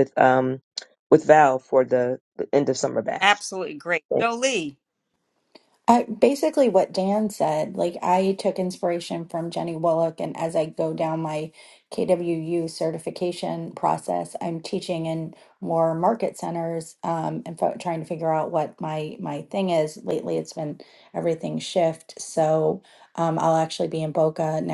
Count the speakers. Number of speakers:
3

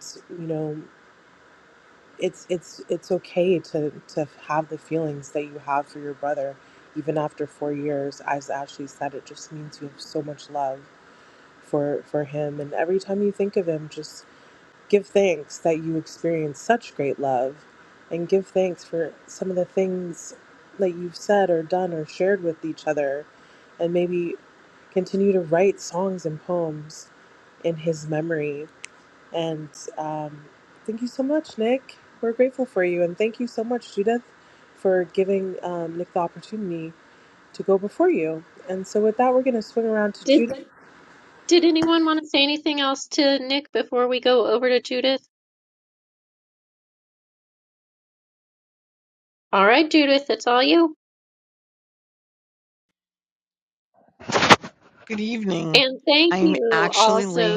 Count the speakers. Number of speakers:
3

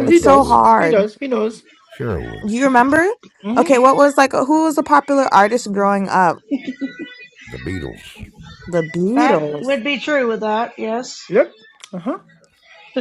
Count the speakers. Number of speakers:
4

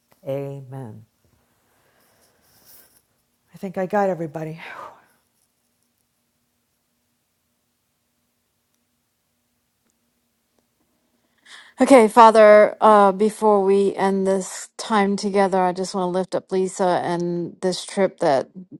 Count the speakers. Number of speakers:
2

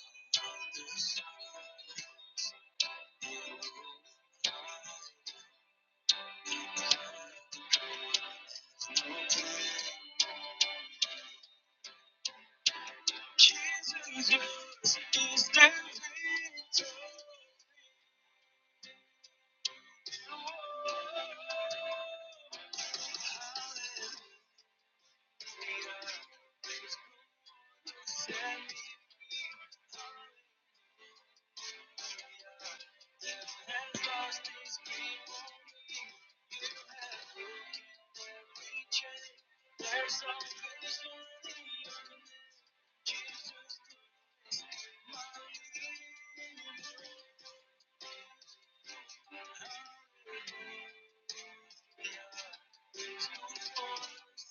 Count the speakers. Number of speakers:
0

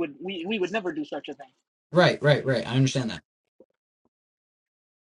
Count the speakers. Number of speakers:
2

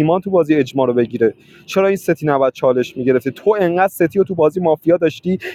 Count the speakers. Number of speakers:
1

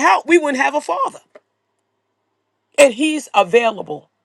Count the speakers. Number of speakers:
1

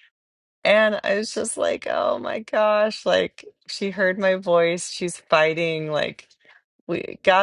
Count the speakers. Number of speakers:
1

